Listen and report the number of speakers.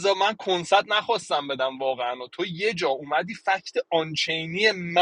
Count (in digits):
1